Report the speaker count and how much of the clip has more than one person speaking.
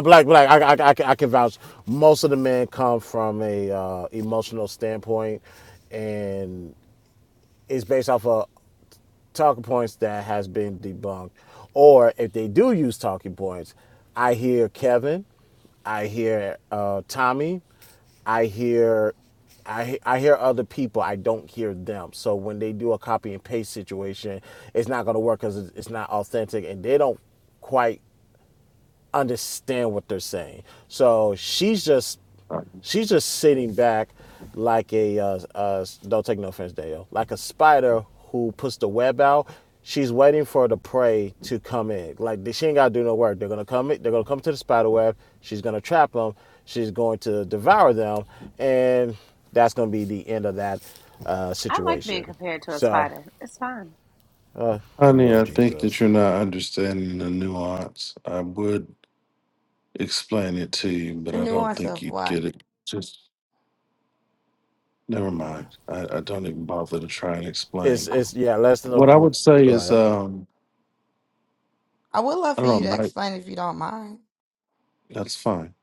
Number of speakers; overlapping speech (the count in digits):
4, about 6%